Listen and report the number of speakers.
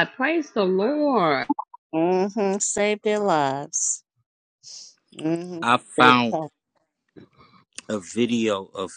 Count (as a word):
three